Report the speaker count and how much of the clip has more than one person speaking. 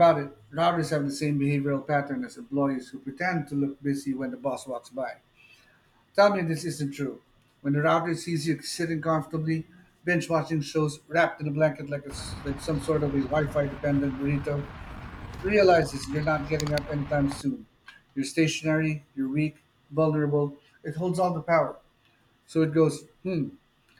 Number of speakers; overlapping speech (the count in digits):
1, no overlap